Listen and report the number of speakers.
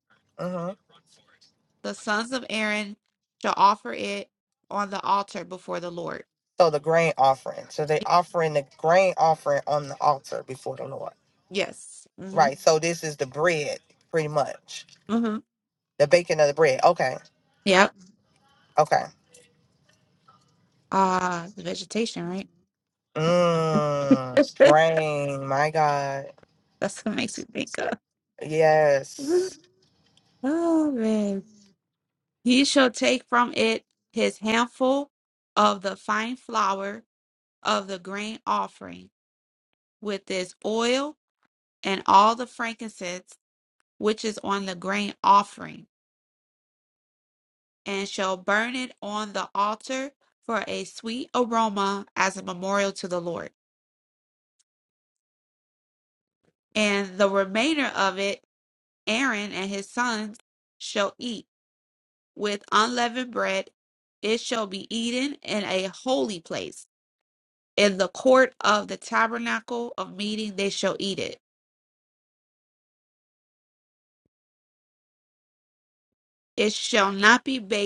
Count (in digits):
2